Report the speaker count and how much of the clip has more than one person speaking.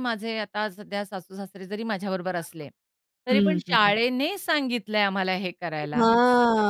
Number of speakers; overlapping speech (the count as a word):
two, about 13%